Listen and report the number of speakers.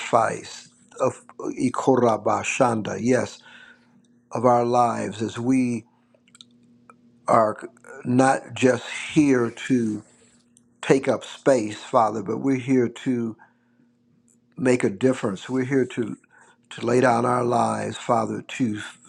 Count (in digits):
1